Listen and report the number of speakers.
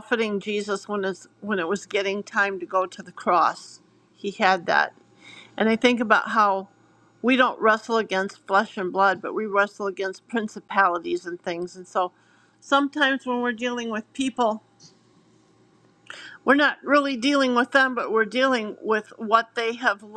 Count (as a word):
one